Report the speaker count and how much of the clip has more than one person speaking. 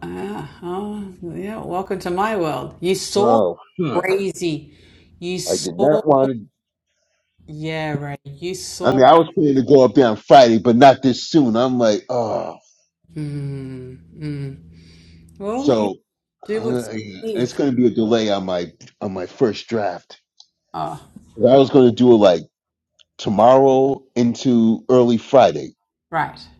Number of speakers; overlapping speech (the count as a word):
two, about 7%